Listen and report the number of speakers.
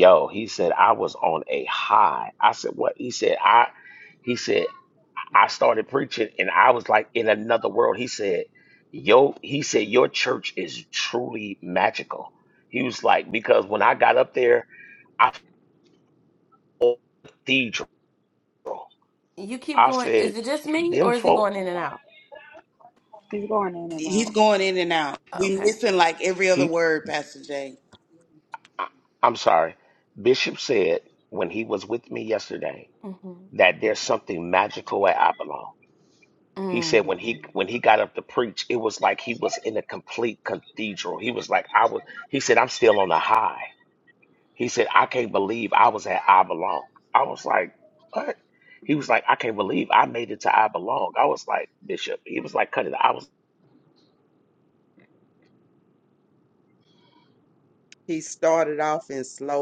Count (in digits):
5